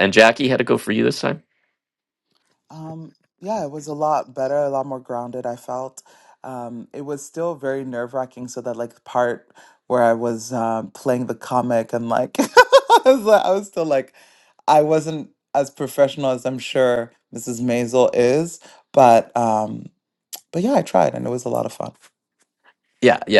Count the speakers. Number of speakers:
two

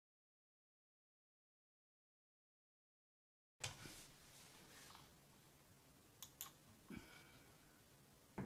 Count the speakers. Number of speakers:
zero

